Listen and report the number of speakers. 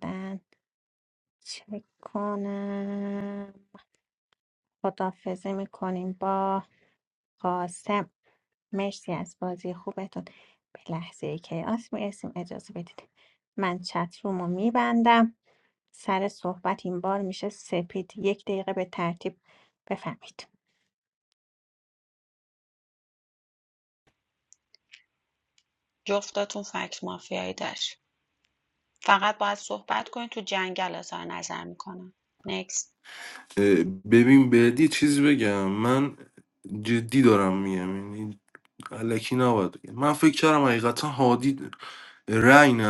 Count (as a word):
three